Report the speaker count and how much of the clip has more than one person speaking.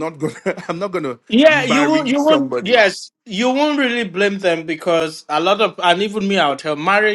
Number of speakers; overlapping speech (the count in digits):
2, about 18%